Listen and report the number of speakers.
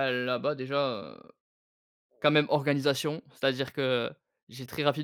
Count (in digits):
1